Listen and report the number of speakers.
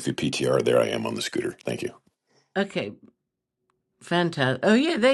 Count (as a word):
two